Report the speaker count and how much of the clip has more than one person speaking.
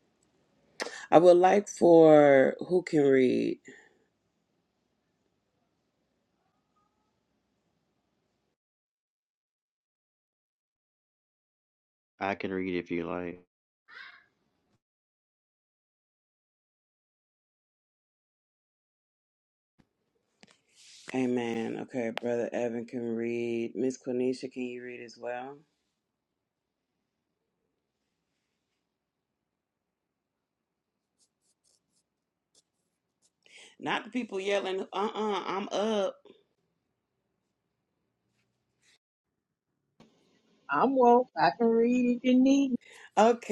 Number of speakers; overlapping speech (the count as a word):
three, no overlap